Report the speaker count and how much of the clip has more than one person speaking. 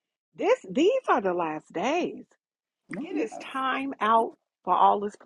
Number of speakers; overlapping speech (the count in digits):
1, no overlap